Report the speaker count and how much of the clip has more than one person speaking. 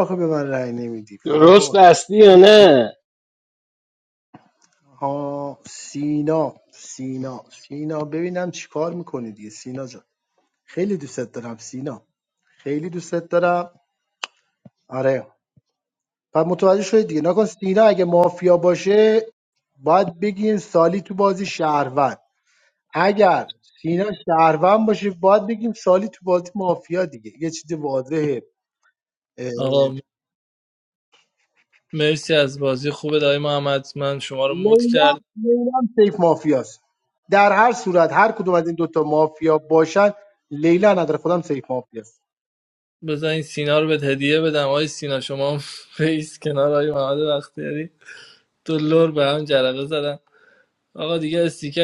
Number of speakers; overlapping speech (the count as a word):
three, about 2%